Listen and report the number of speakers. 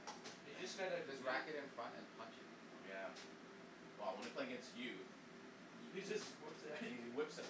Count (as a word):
three